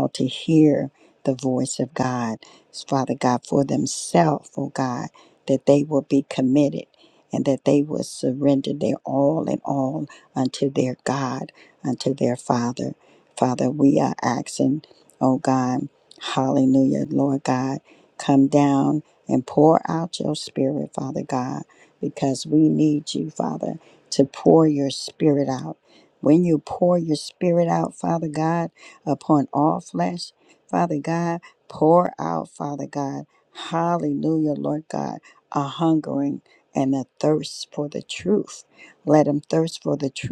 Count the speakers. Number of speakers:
1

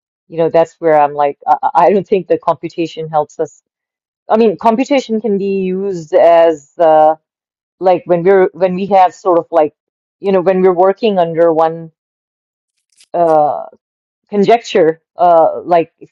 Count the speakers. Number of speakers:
1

